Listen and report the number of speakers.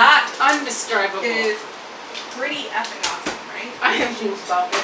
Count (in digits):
2